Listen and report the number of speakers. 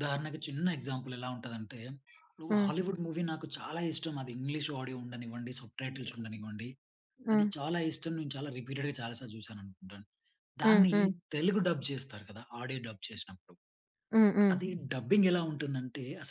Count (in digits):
2